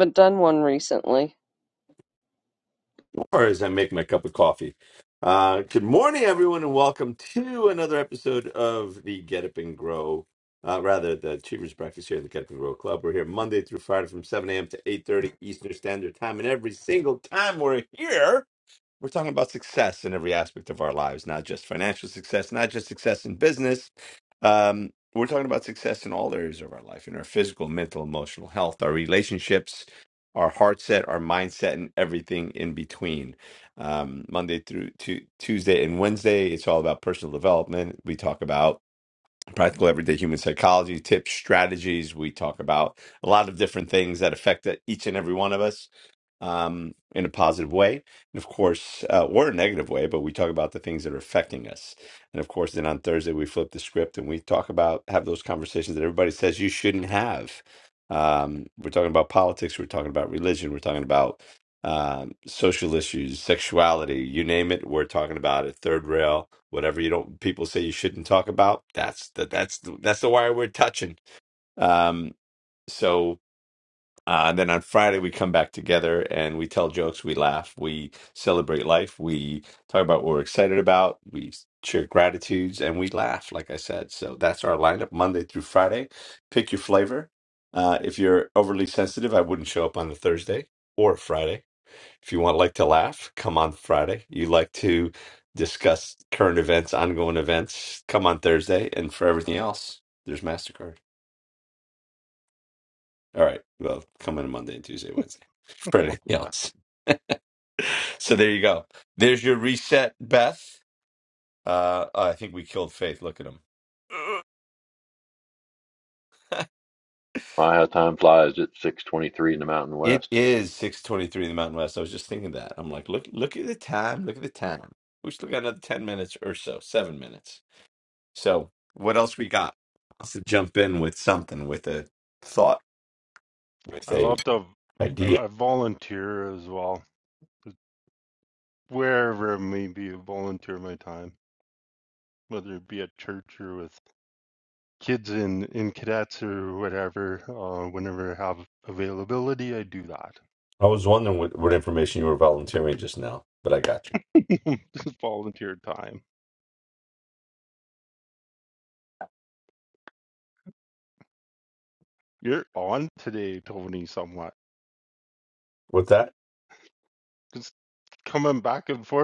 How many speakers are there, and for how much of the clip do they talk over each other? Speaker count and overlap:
four, about 1%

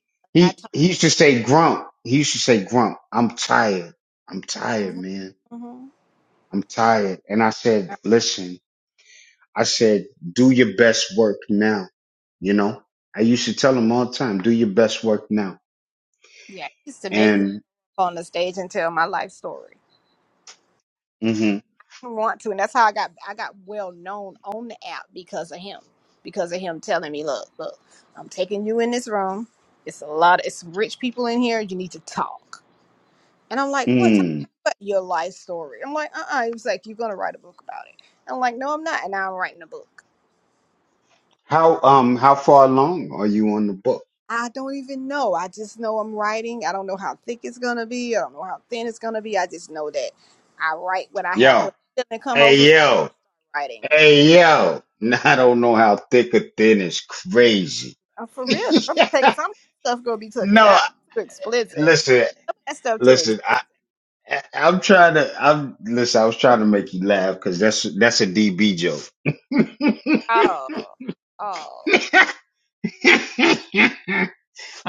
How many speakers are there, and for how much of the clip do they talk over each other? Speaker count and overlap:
two, about 4%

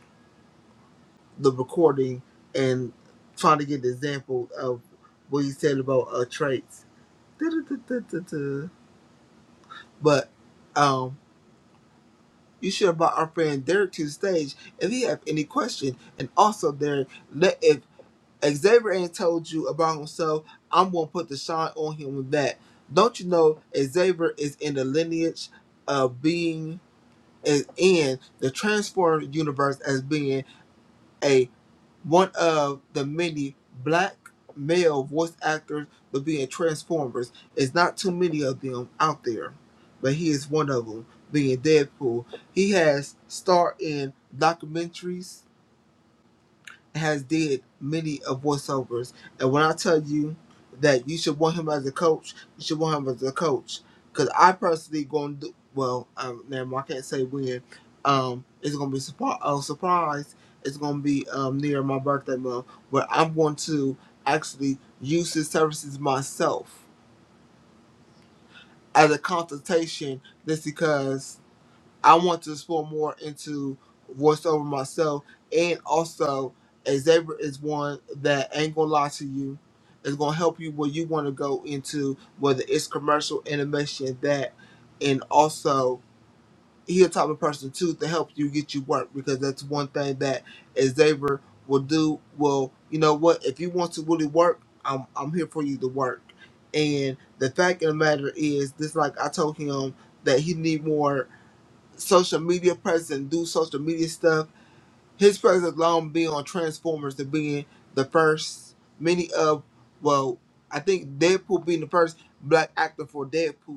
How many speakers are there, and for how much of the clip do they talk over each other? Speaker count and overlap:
one, no overlap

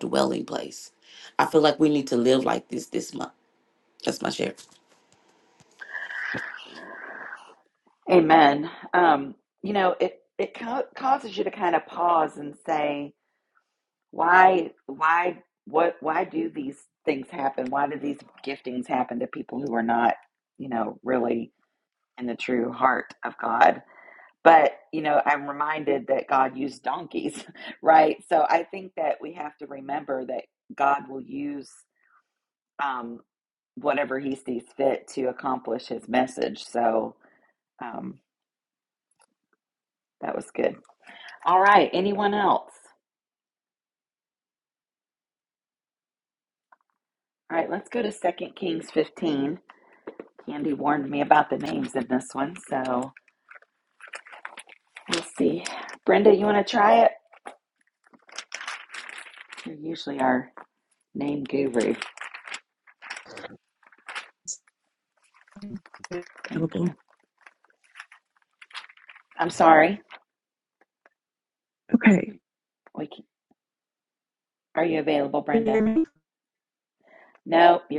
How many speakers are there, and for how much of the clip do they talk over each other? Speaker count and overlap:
three, about 1%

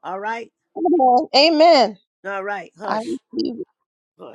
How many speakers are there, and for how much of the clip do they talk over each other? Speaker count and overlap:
two, about 6%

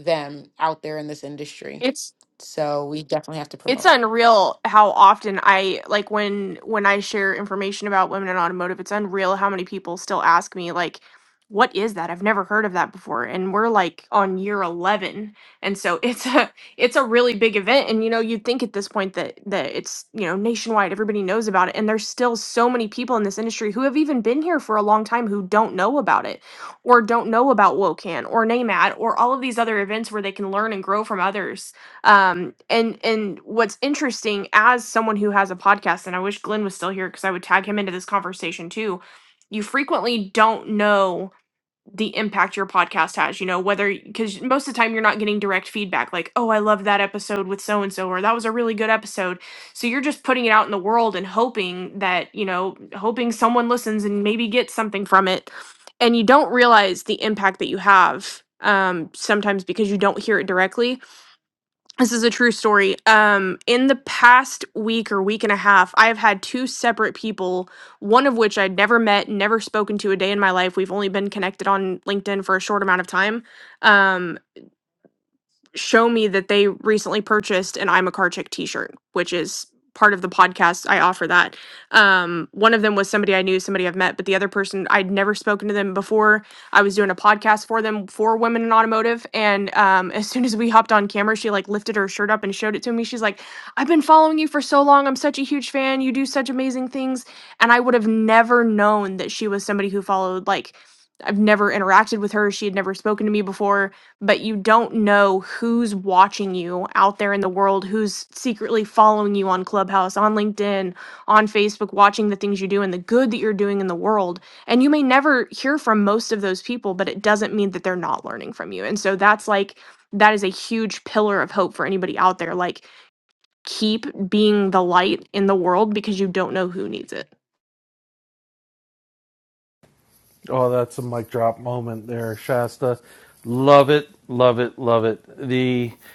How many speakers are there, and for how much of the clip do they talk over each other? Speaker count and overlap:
three, under 1%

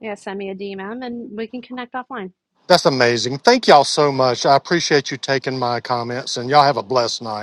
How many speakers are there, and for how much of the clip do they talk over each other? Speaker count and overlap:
two, no overlap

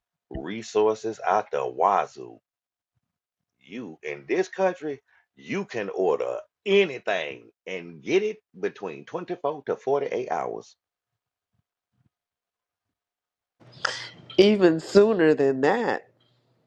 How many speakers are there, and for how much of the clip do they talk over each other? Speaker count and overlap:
two, no overlap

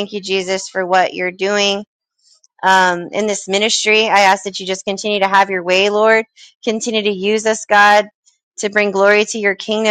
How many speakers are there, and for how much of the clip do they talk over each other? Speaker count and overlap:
one, no overlap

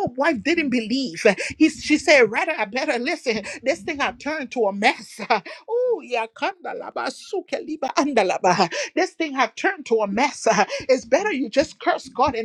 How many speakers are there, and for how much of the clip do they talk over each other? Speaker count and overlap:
one, no overlap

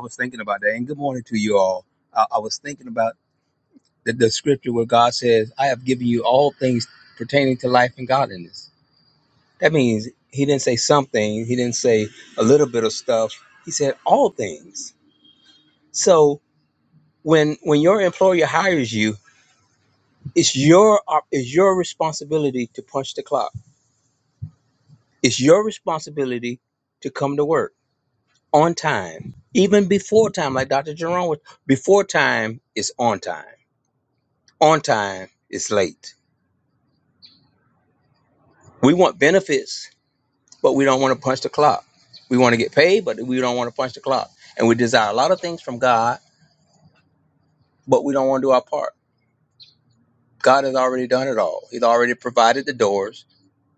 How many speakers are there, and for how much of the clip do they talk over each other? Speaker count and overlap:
one, no overlap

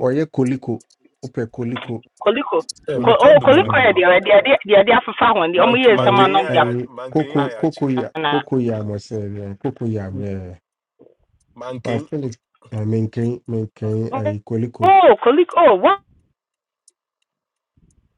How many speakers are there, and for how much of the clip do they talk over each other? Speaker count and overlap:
three, about 18%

